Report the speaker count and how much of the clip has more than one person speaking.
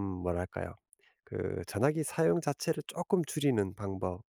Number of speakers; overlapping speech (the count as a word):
one, no overlap